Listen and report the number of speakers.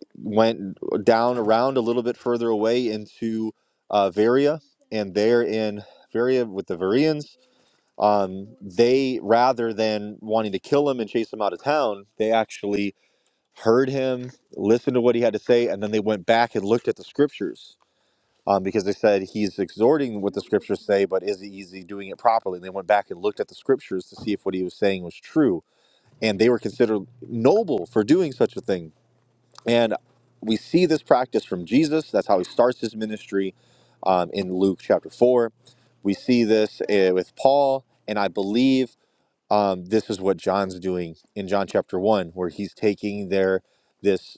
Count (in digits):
1